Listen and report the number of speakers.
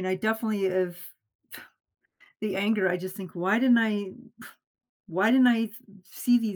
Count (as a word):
one